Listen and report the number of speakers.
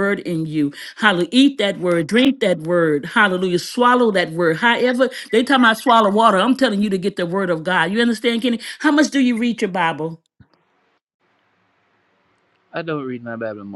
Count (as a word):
two